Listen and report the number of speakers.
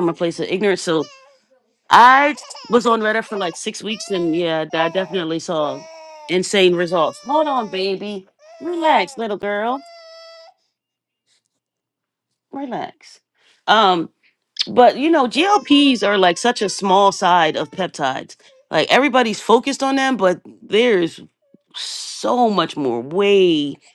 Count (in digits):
1